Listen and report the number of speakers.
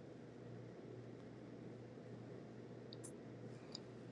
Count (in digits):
0